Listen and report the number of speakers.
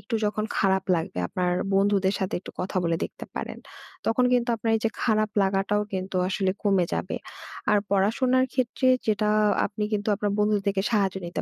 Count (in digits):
1